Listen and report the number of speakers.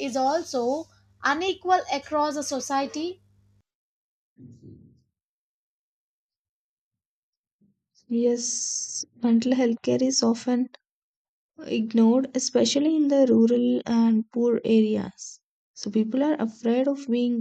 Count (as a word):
two